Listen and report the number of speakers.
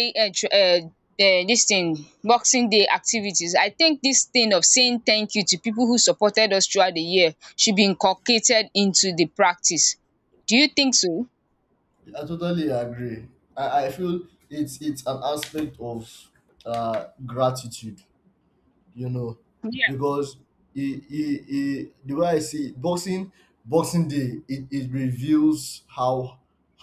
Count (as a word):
two